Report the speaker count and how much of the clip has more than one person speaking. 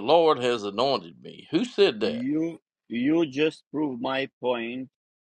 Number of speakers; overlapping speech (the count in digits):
2, about 4%